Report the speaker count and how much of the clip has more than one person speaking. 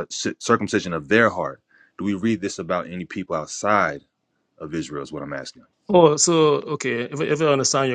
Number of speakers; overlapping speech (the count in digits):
2, no overlap